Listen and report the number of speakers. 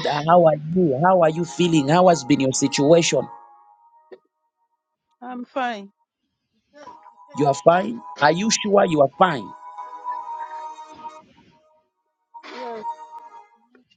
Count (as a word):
two